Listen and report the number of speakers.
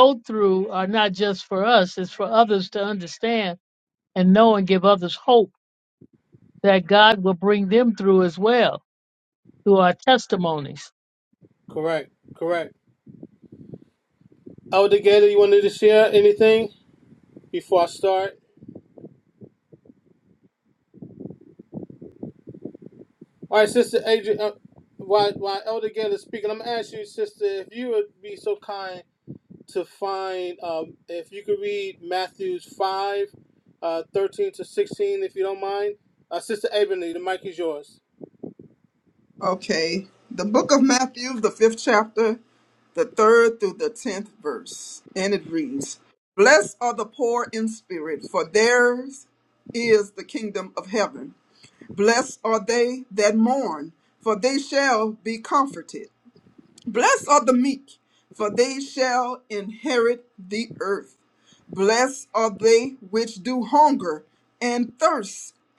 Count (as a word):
three